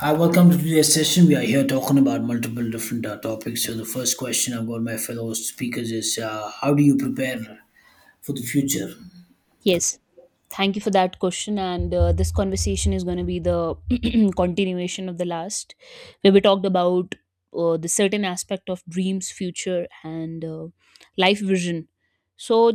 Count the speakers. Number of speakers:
2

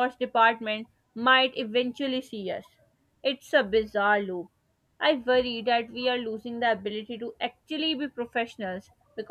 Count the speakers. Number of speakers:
1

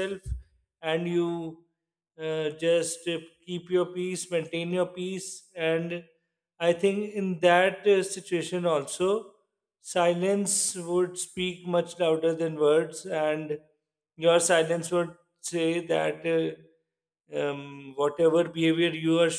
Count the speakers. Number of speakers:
1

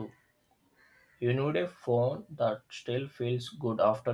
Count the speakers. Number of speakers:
1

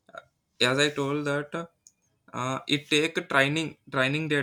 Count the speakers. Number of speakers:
1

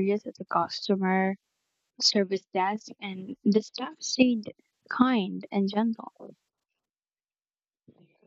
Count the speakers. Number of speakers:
1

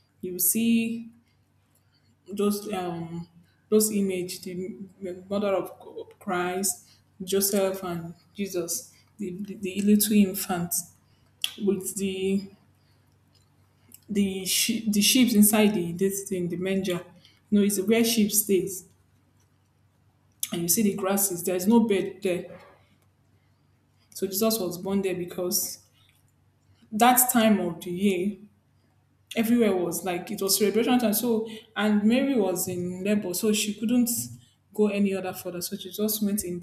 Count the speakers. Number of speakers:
1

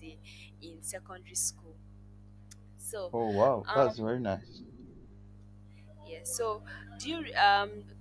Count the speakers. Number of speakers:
2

